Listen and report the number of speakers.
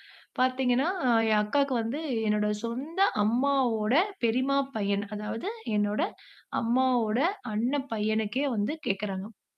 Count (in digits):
1